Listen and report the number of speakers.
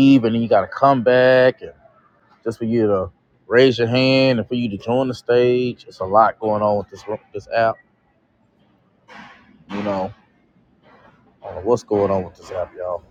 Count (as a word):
one